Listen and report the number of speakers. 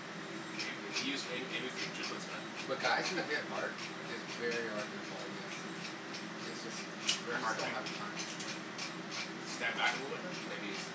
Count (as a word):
two